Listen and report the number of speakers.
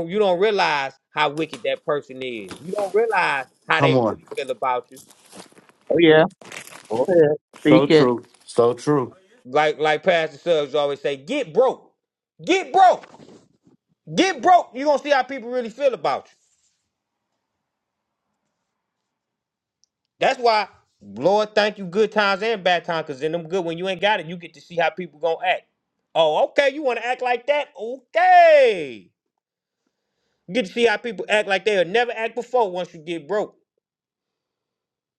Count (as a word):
three